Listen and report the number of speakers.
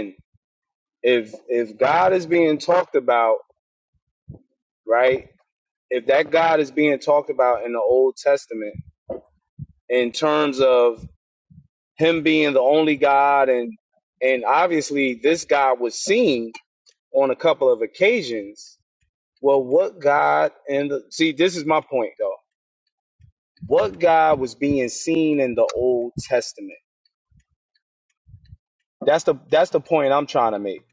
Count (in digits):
1